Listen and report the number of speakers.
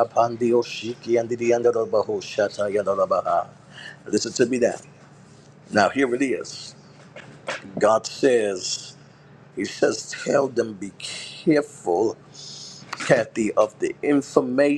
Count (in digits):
1